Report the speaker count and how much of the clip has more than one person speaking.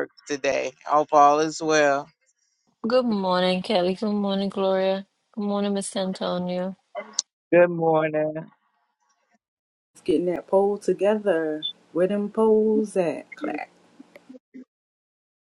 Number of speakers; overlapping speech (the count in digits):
3, no overlap